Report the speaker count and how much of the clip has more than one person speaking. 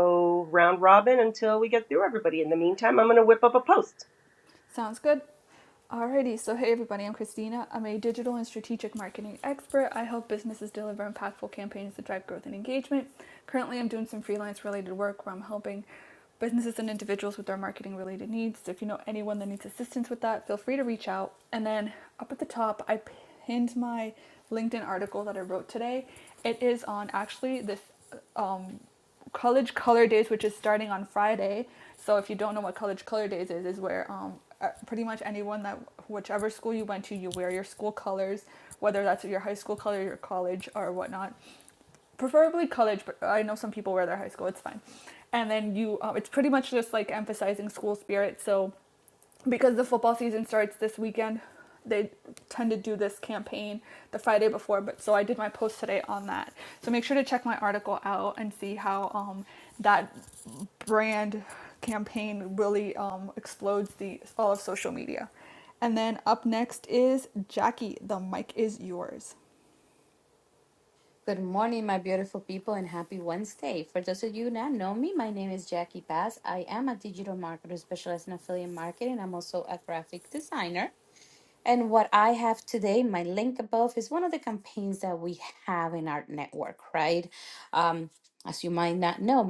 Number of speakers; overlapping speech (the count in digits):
3, no overlap